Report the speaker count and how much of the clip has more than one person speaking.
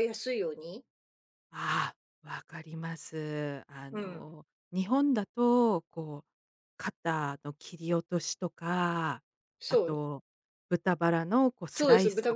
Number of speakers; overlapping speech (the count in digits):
2, about 9%